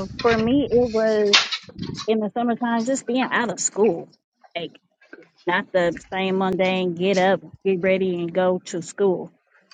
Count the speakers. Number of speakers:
1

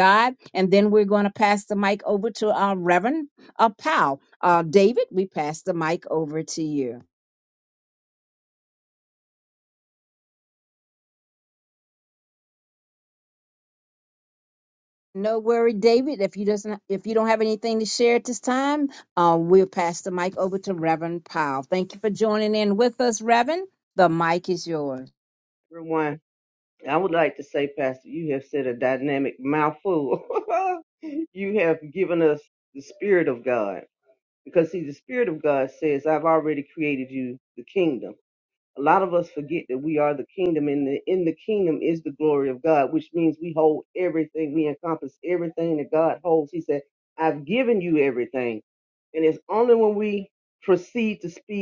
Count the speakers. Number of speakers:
2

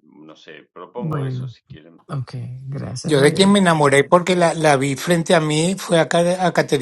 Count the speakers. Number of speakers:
3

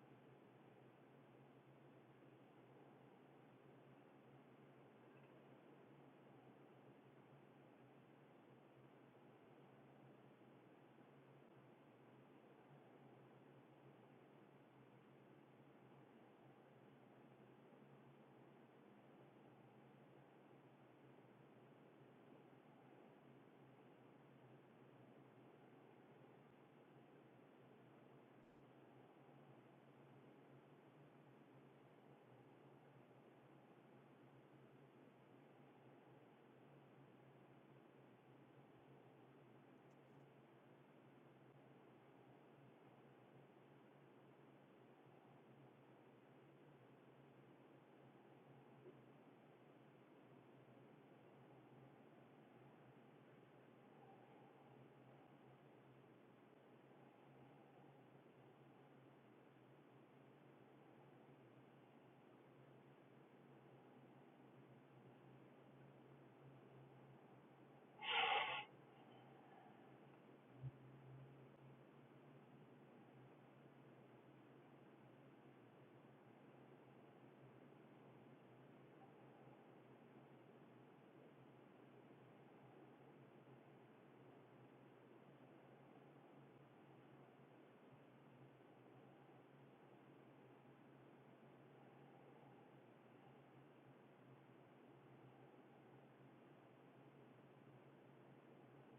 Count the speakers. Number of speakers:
0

